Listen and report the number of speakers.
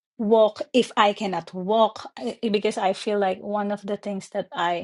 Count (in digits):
1